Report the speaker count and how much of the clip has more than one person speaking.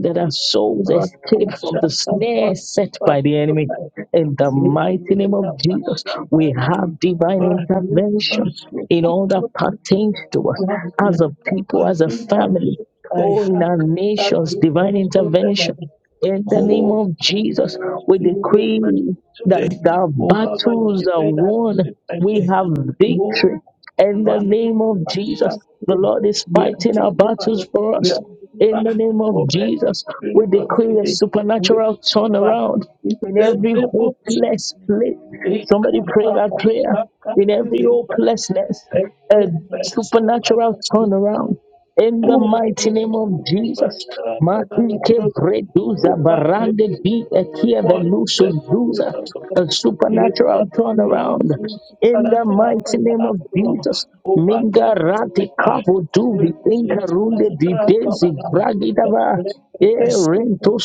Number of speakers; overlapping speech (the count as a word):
two, about 52%